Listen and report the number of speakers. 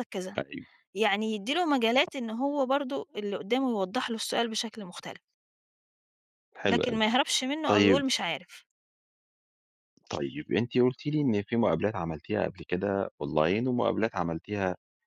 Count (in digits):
2